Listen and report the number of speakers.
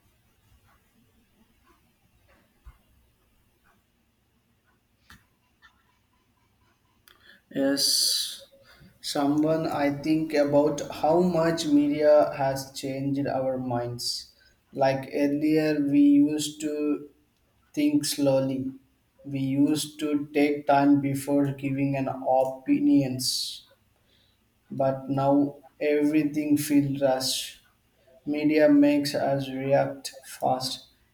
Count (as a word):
one